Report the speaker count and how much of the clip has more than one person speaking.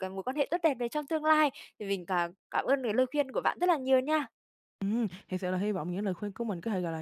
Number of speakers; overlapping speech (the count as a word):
two, no overlap